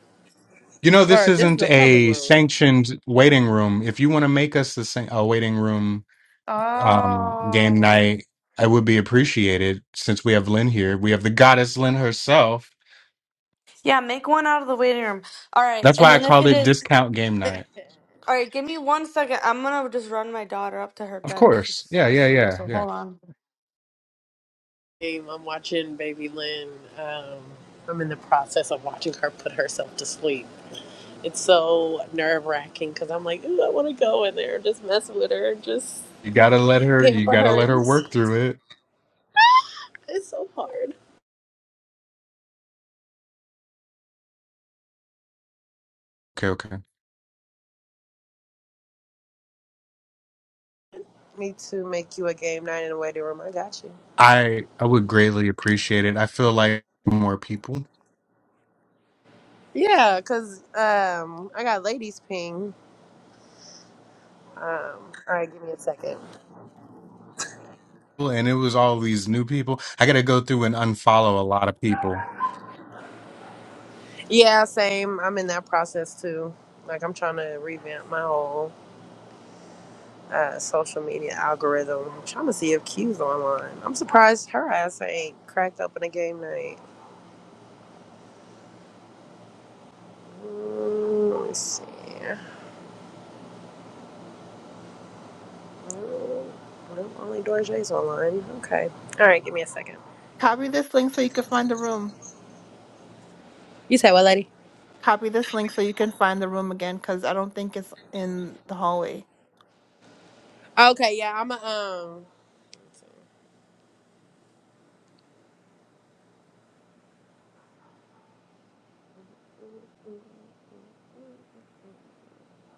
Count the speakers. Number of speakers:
4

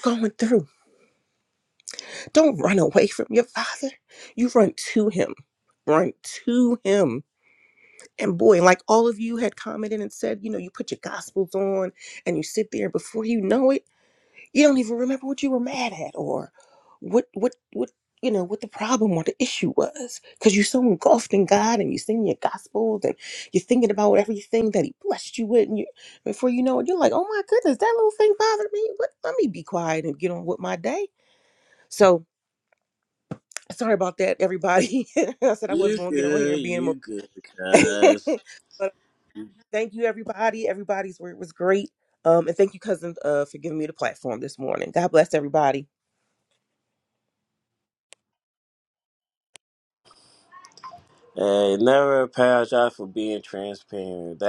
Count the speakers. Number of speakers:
2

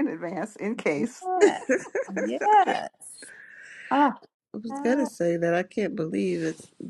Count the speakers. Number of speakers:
3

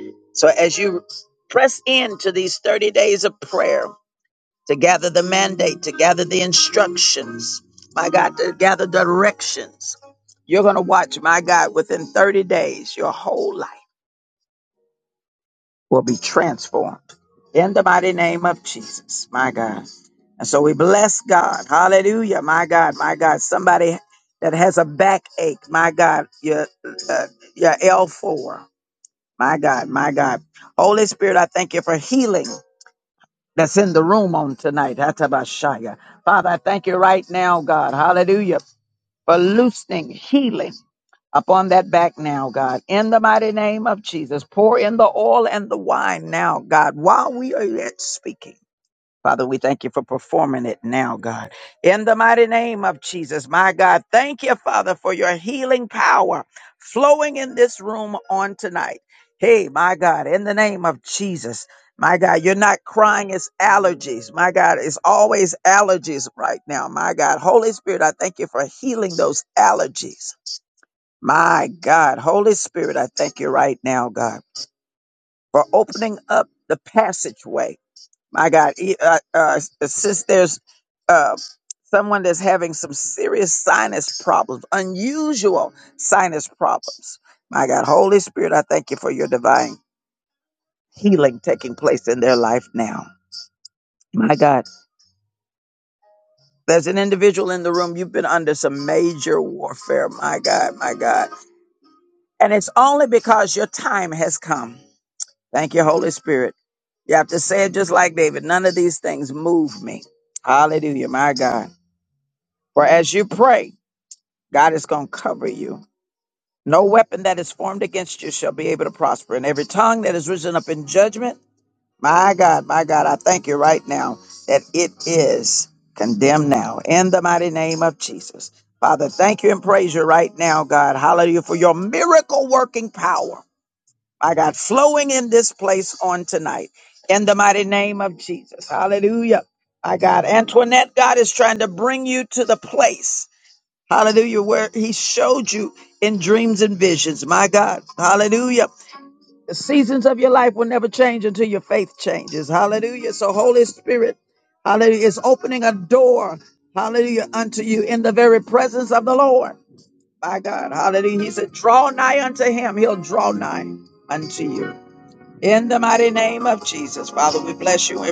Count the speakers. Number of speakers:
1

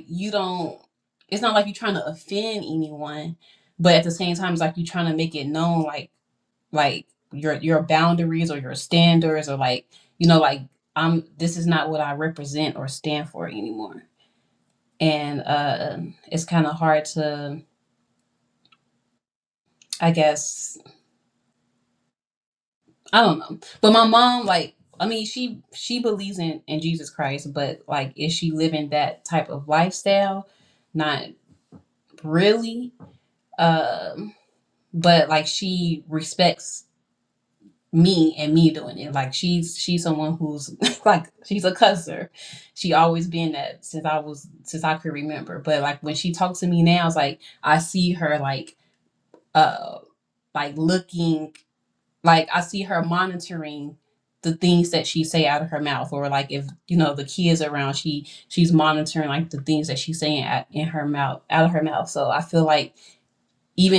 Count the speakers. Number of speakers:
1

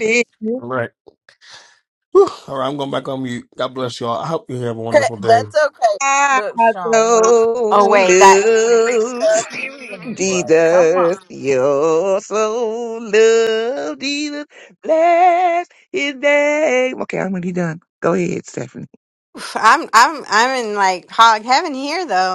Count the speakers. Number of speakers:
4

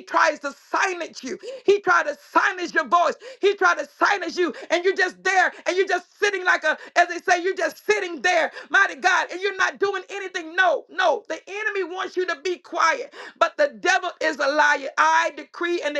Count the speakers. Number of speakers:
1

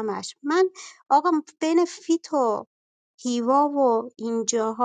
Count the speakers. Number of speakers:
1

